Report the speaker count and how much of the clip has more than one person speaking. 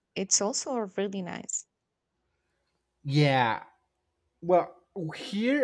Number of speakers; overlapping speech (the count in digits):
2, no overlap